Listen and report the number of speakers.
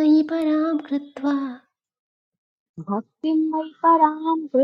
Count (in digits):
2